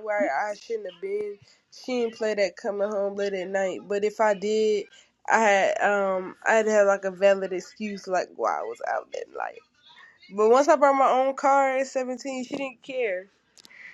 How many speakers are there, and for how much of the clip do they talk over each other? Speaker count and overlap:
one, no overlap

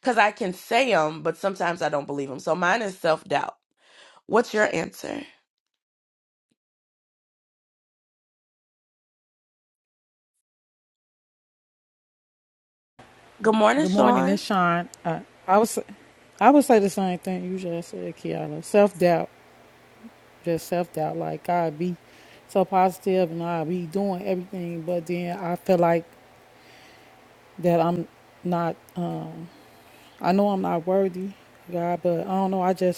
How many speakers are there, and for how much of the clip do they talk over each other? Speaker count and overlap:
two, about 2%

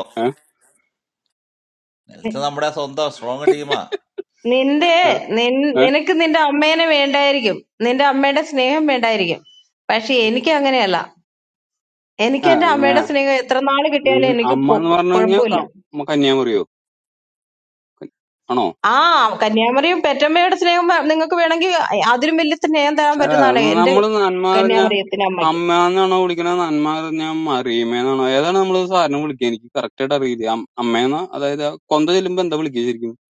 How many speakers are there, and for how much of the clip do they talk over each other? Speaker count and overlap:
three, about 9%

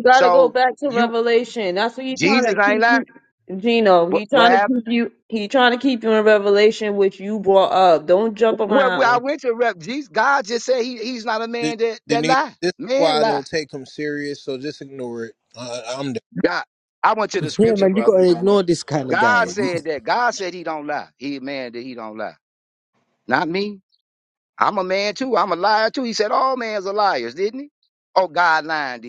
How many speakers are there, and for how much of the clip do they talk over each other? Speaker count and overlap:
four, about 19%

